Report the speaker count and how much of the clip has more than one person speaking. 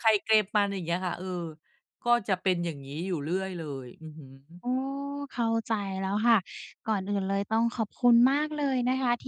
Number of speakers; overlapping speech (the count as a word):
two, no overlap